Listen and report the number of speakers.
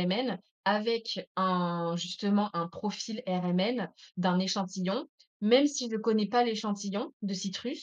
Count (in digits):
1